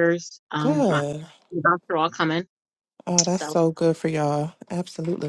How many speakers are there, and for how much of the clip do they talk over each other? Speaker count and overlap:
2, about 16%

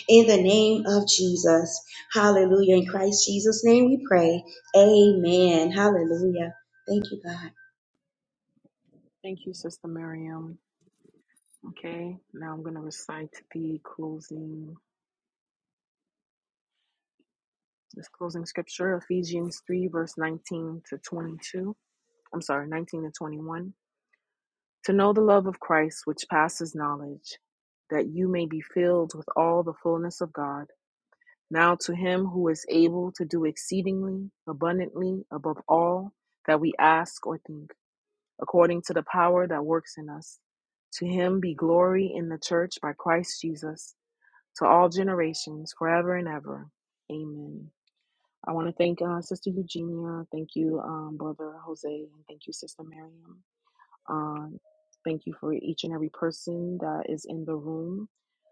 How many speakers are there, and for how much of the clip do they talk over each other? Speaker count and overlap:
2, no overlap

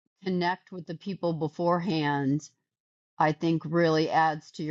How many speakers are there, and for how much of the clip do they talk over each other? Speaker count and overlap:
1, no overlap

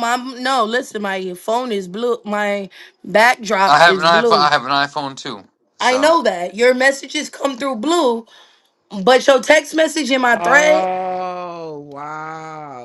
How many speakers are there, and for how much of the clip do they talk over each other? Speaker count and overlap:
3, about 12%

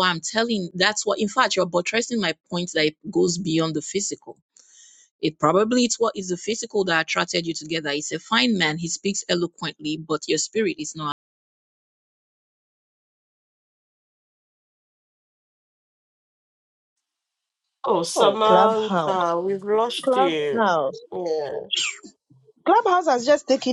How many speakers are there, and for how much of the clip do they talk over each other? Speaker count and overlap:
3, about 7%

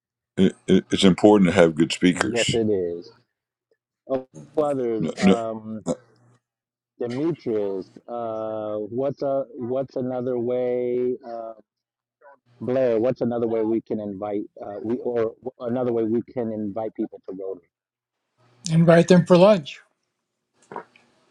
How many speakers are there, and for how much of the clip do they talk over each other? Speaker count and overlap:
3, about 4%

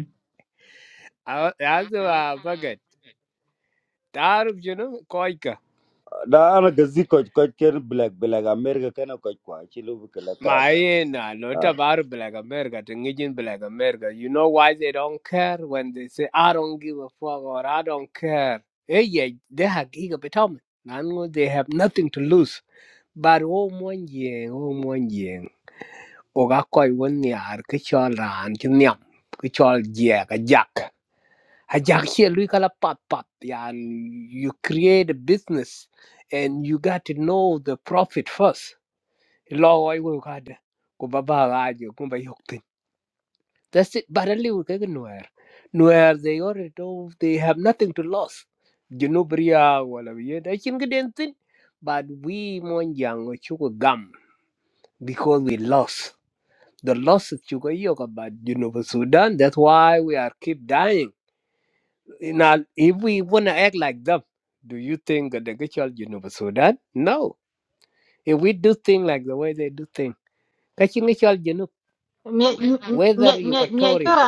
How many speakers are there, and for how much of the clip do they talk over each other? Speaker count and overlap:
3, about 3%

